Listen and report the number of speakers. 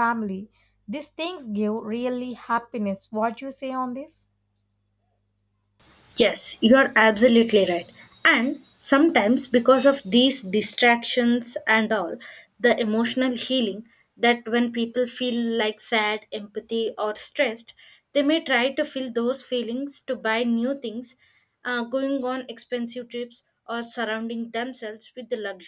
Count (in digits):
2